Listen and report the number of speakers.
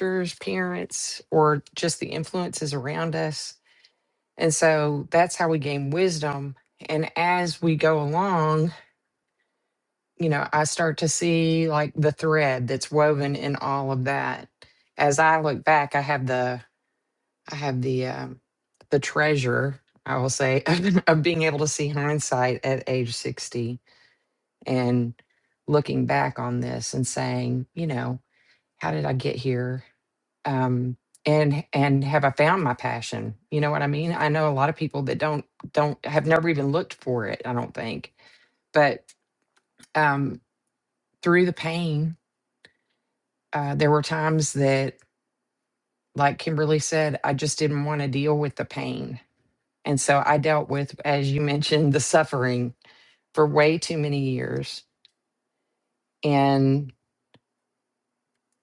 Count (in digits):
1